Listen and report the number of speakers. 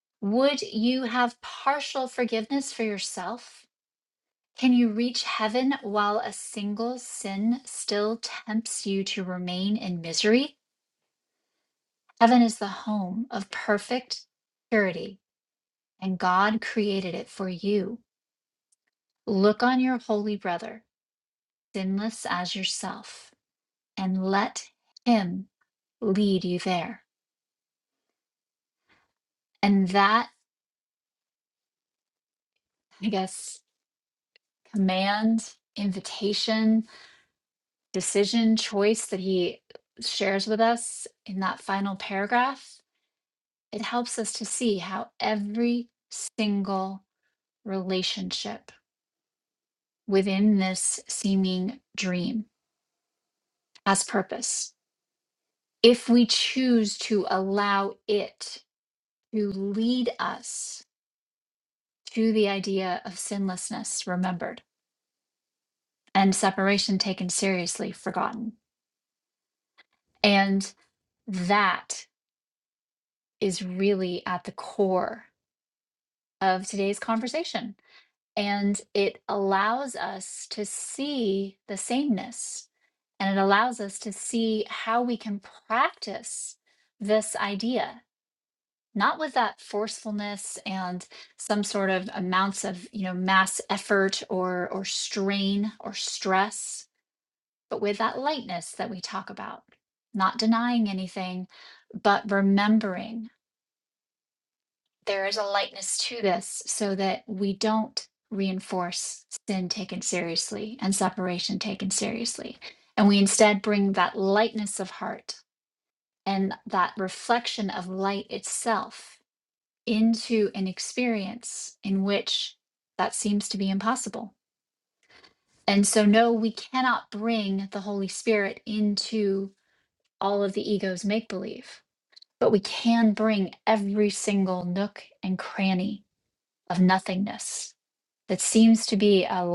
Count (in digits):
1